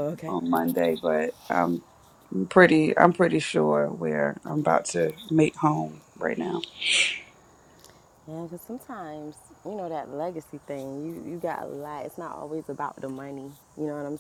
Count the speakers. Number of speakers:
2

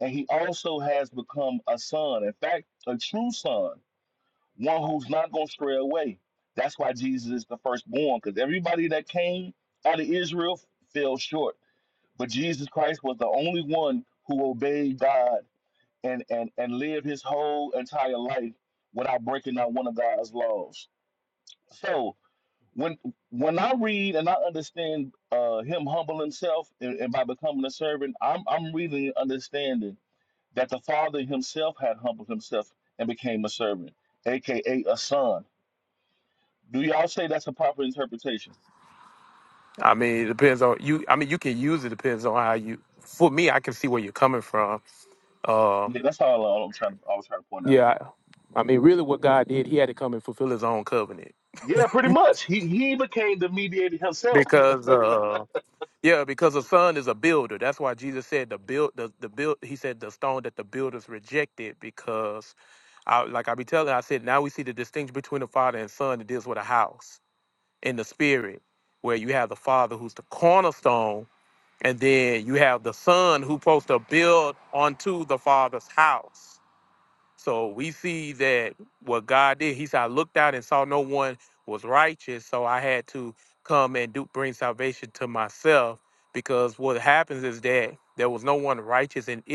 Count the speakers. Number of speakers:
2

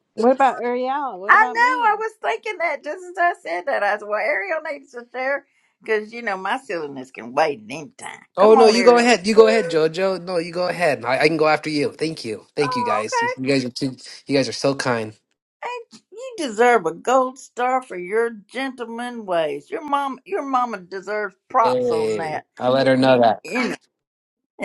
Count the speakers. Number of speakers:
3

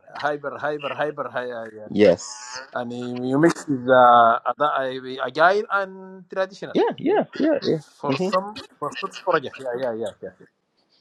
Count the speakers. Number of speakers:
2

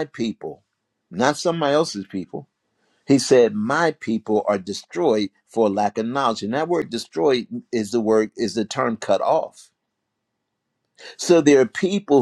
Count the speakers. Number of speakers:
1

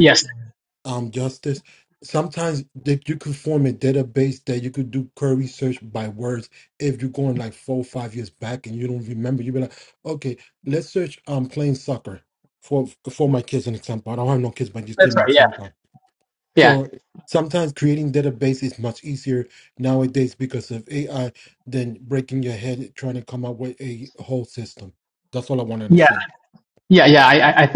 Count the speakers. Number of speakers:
2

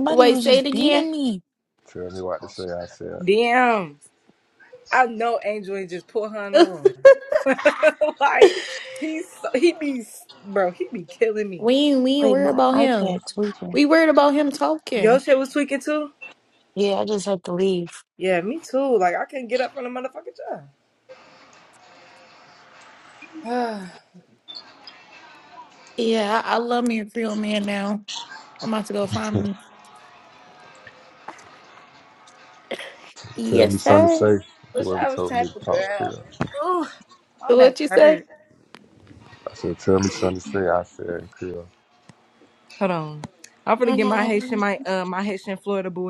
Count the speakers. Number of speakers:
4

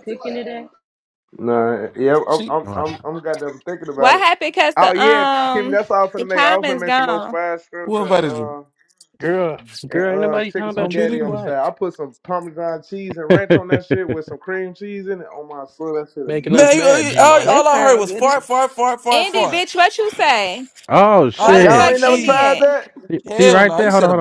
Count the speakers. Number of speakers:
6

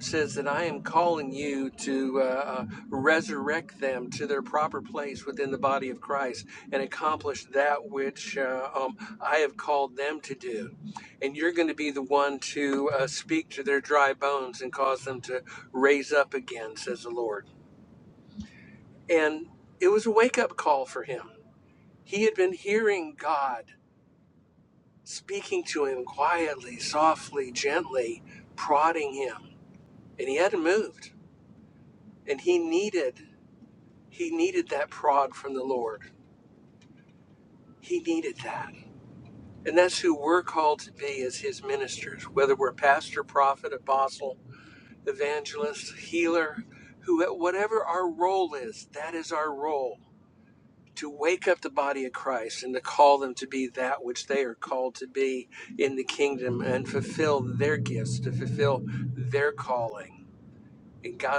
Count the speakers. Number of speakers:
1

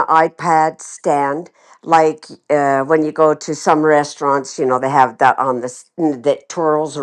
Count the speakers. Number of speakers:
1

